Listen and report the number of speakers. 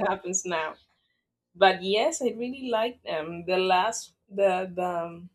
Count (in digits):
1